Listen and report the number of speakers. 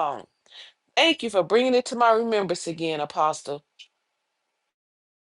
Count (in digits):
1